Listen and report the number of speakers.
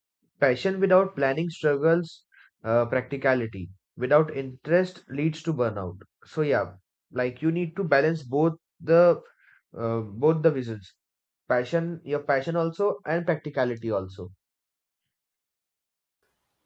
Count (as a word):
one